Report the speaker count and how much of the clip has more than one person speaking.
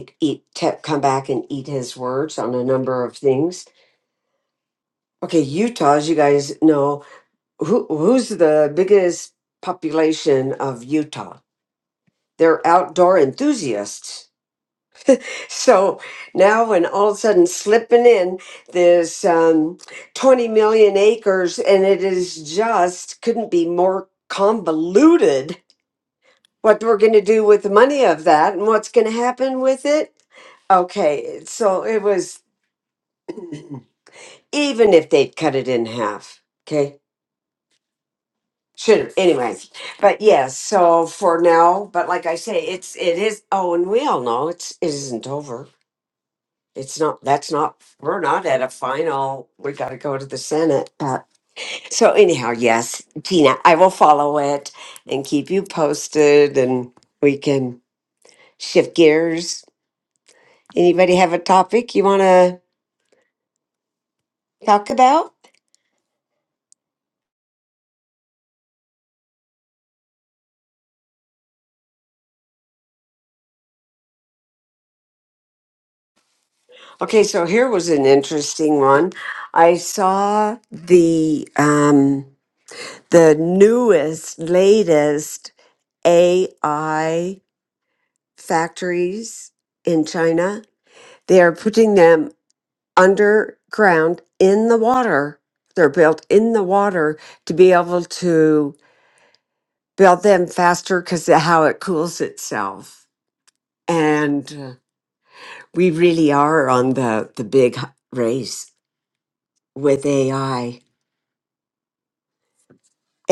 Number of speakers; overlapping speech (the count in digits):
1, no overlap